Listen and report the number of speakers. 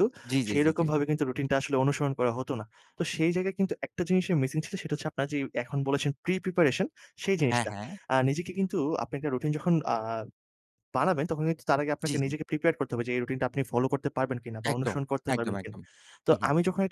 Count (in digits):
2